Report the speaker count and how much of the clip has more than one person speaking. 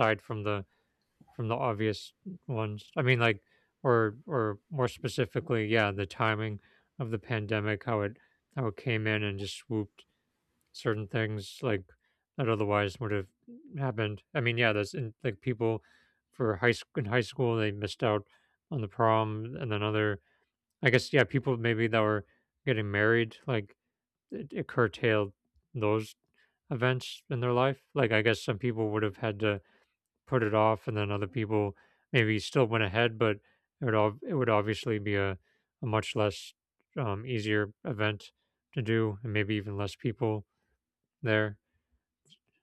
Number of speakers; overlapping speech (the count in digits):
1, no overlap